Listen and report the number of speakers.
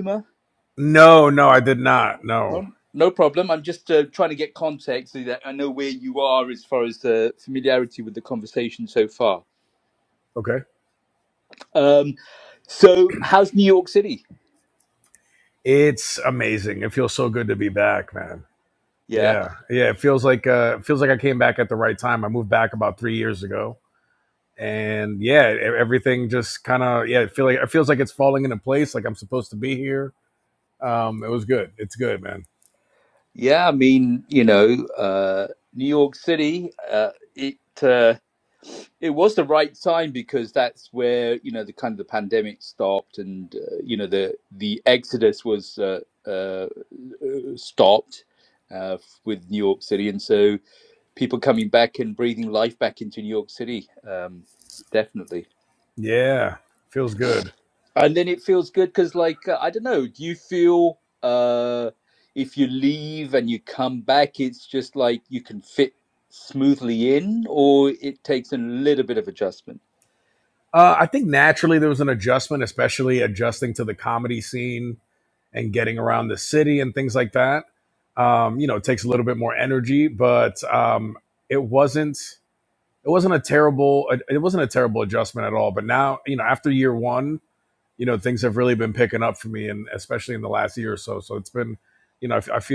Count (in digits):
2